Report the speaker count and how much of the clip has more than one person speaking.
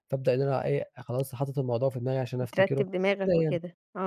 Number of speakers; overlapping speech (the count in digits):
2, about 19%